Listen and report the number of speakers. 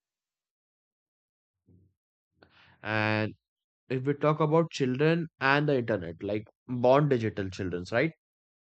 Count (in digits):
1